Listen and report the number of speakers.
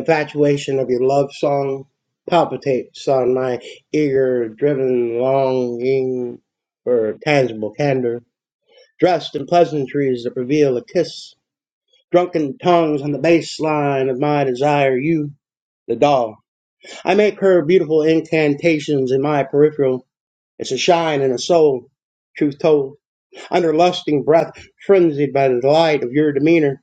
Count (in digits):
1